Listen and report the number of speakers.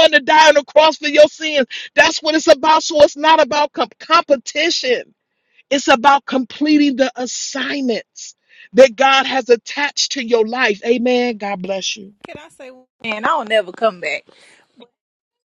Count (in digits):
2